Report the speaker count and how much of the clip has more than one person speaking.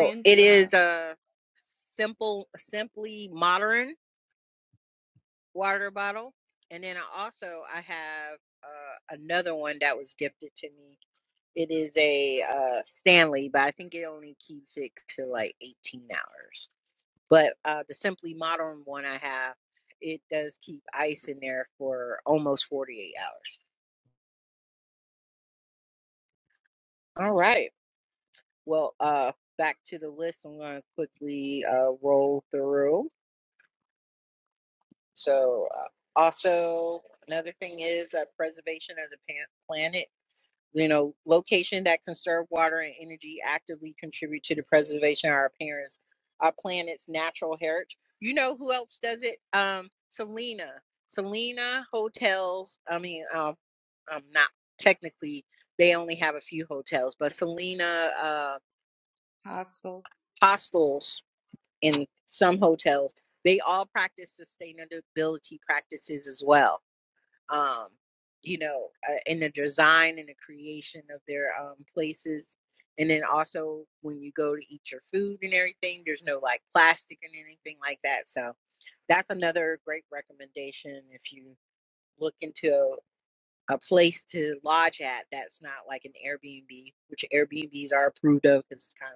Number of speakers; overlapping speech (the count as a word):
two, about 1%